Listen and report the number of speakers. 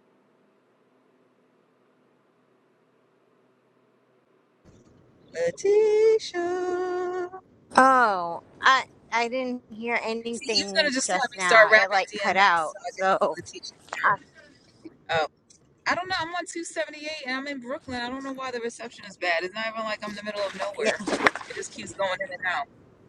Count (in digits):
2